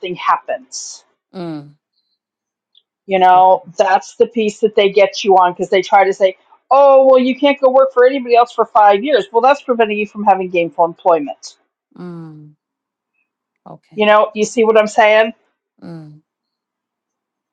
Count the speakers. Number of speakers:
2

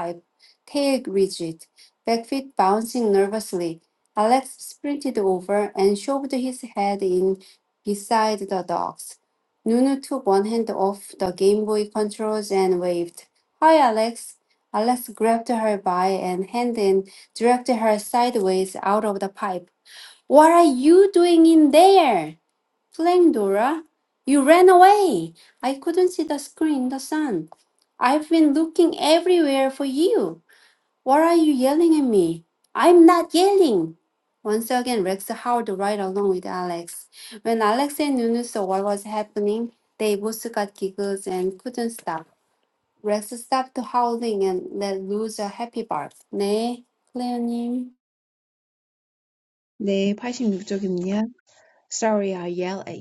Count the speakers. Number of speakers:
2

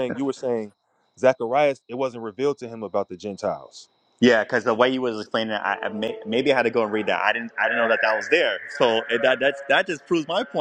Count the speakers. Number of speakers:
2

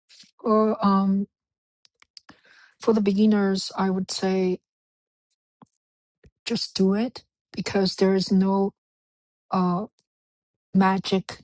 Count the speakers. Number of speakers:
1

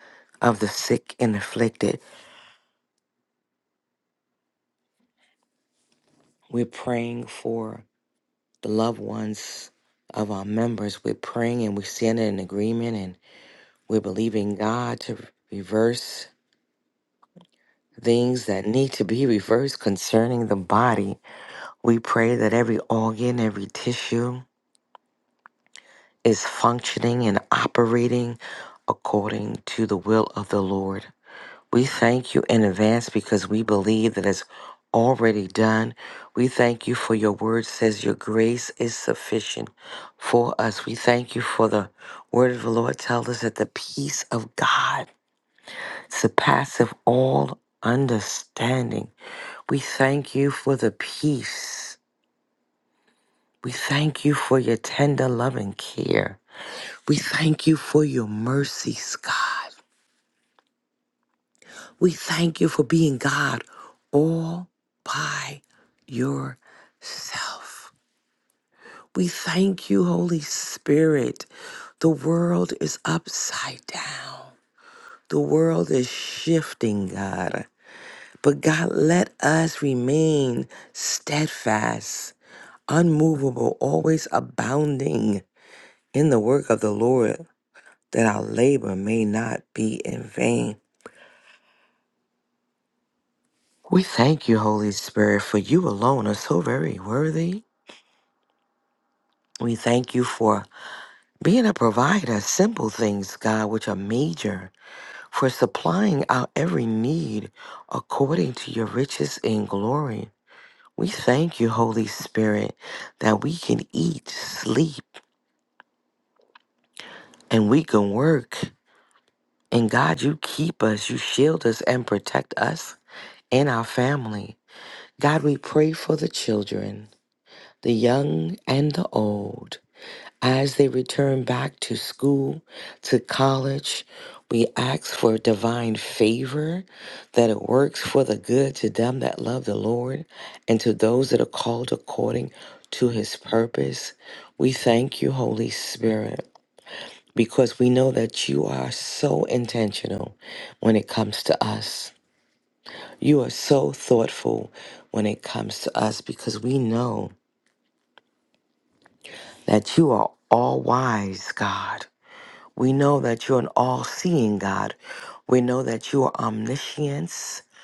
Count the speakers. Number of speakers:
1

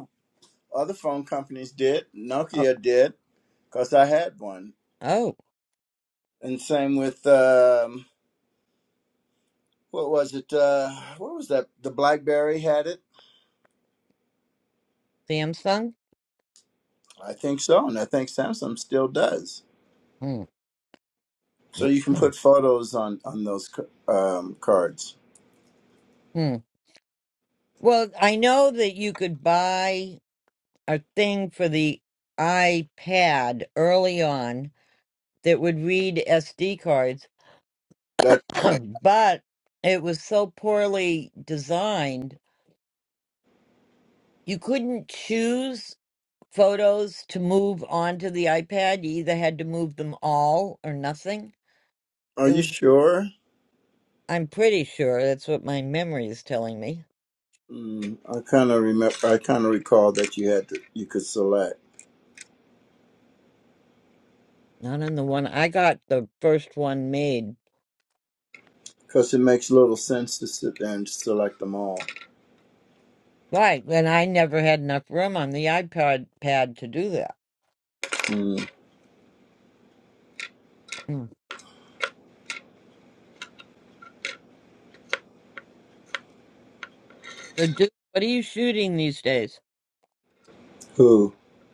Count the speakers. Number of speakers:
2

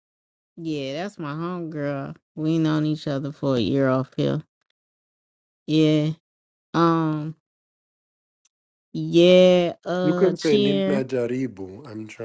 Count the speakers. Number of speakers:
2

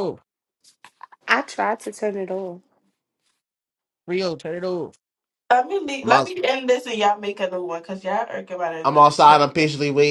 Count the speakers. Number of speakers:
4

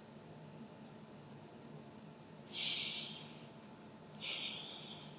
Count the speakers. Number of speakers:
0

